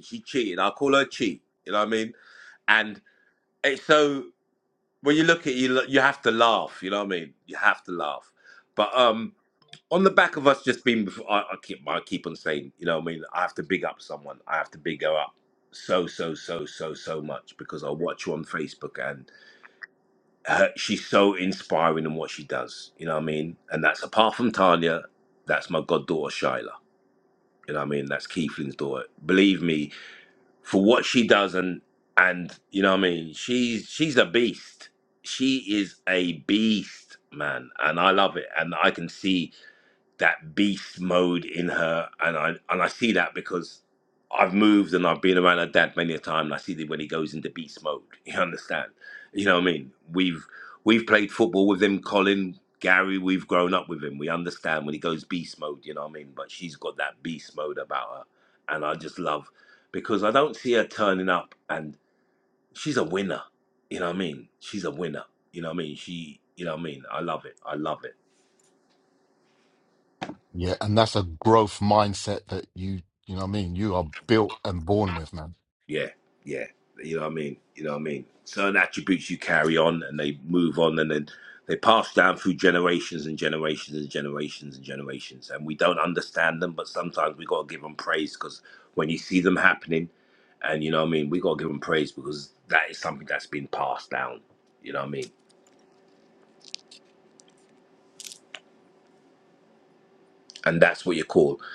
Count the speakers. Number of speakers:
two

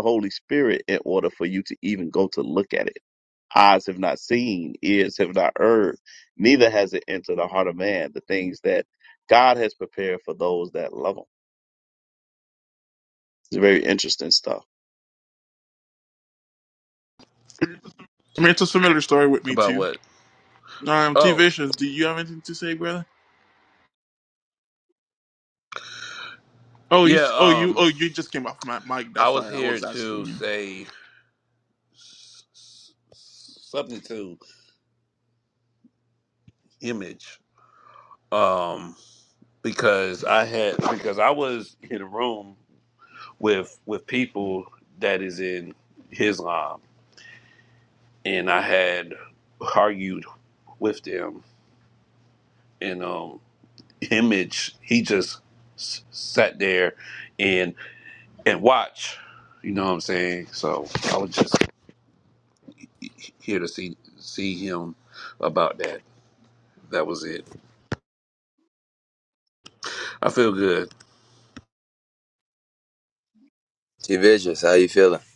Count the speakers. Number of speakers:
four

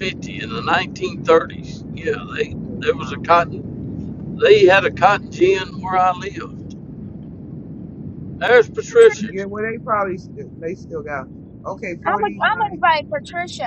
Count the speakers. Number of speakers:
three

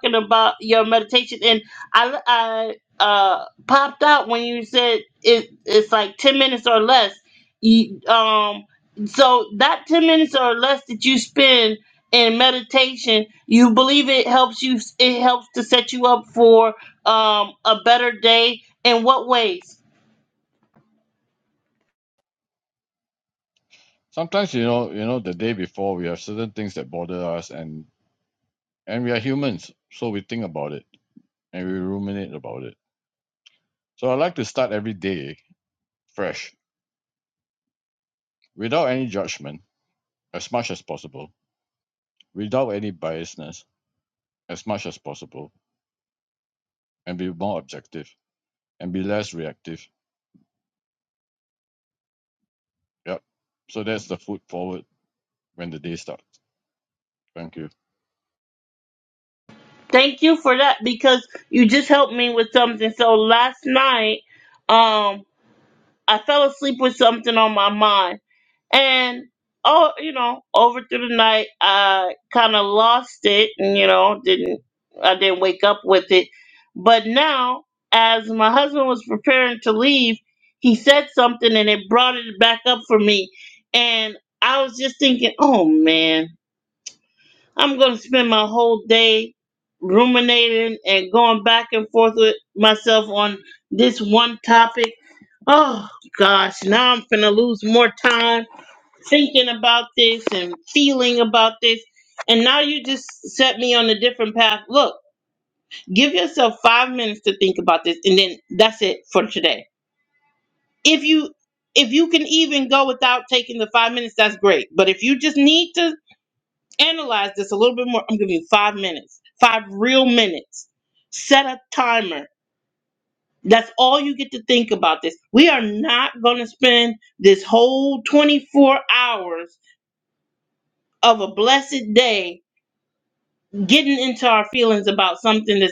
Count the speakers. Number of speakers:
two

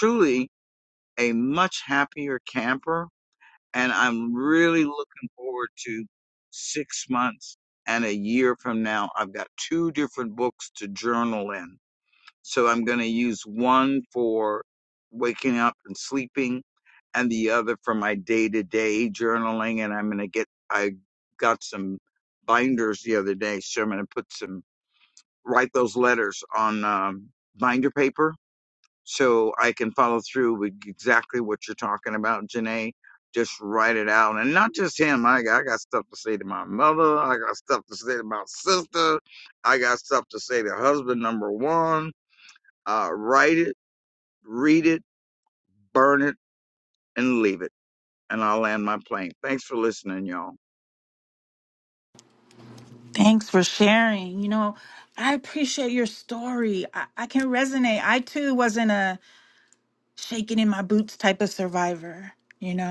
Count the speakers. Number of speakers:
two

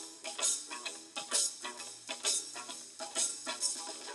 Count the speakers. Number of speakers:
zero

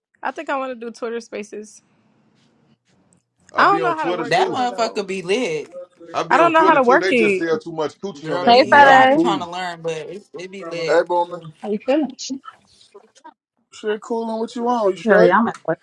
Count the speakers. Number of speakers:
five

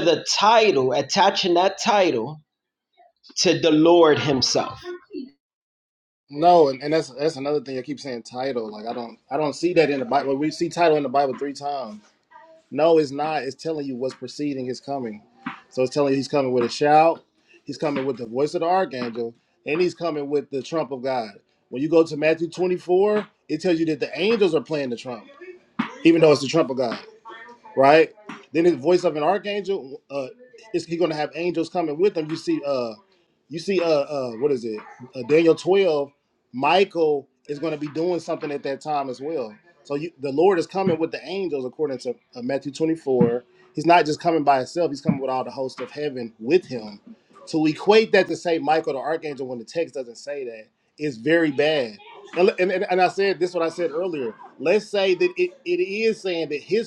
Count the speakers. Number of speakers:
two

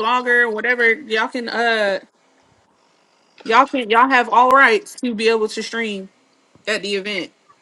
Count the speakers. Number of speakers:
one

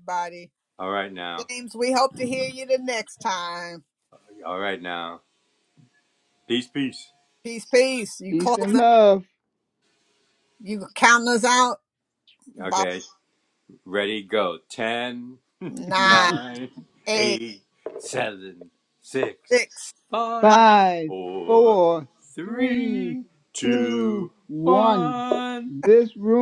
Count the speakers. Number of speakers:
three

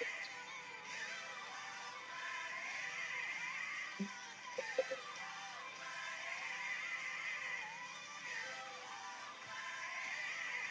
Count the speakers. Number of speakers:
zero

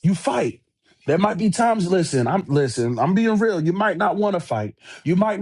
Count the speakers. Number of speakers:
one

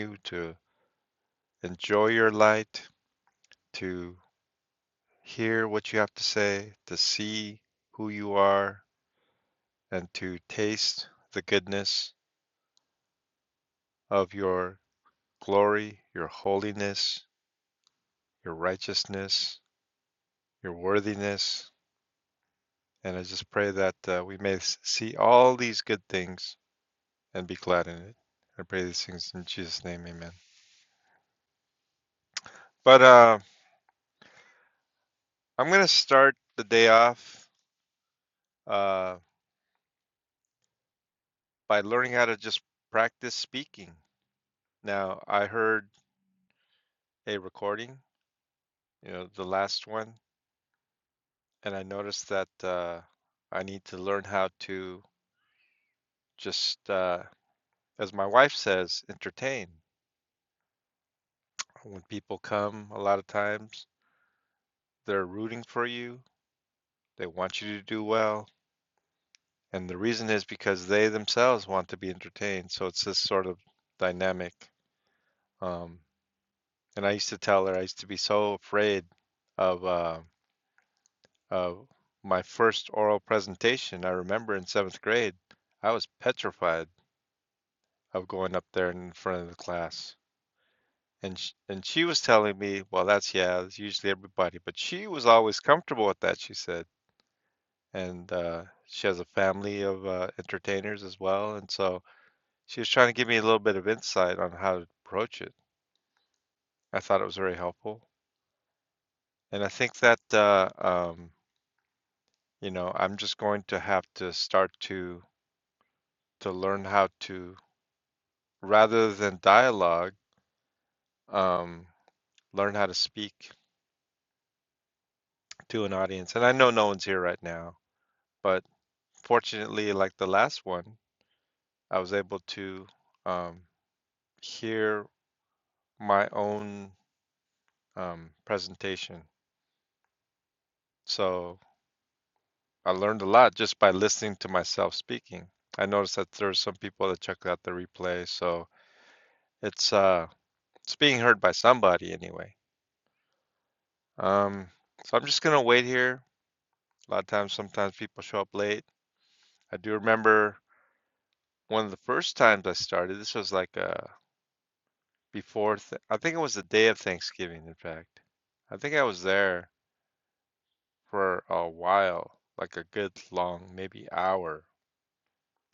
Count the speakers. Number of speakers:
one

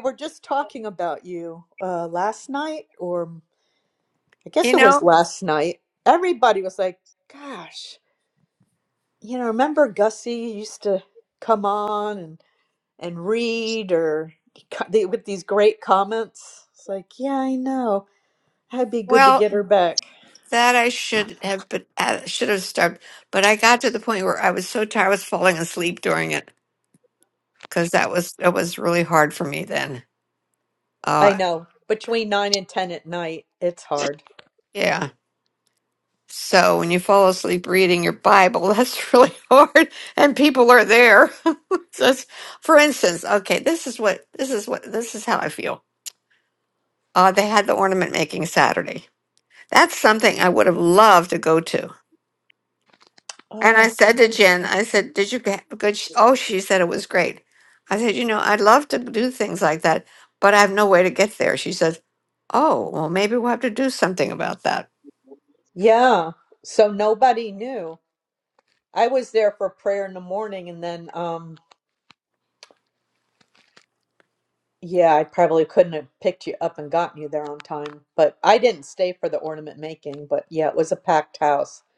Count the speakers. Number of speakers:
two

